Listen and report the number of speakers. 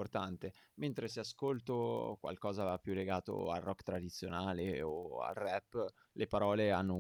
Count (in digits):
1